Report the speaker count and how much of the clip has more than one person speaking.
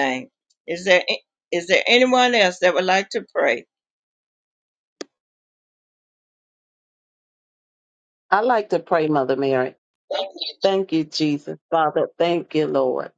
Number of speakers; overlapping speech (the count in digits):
2, no overlap